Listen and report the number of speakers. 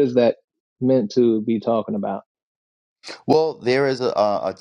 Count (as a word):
two